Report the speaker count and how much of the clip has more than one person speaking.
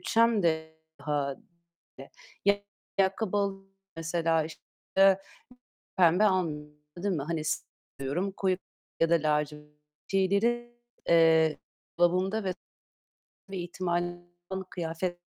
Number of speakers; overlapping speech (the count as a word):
one, no overlap